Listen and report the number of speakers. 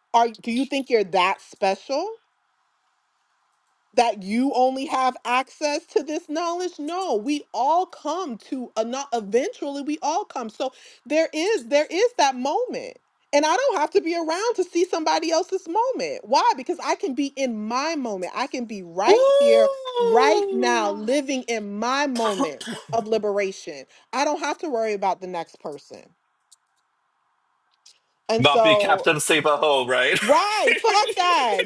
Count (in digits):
2